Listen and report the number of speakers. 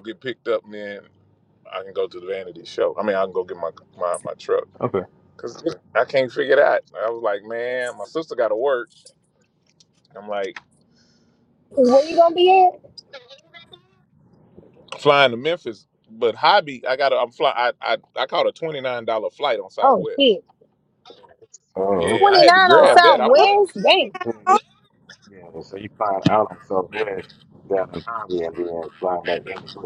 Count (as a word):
three